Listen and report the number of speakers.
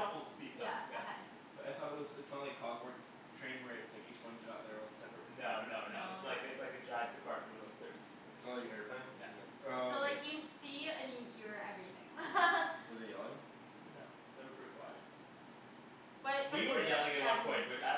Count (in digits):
4